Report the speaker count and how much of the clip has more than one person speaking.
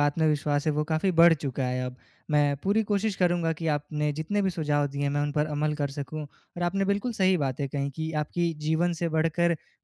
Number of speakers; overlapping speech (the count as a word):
one, no overlap